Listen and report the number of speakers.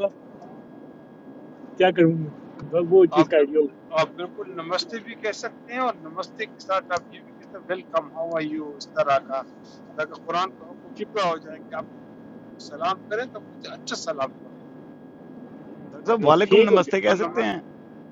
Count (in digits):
3